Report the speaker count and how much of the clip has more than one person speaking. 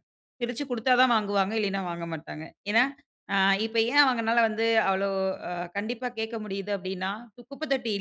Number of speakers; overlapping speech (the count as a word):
one, no overlap